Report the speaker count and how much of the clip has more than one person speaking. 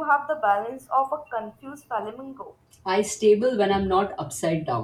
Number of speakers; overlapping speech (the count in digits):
2, no overlap